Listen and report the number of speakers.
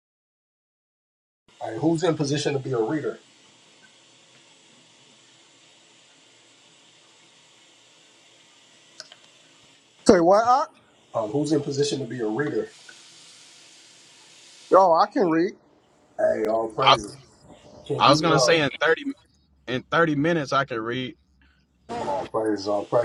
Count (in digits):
3